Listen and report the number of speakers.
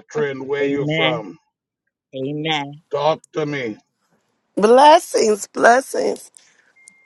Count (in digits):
3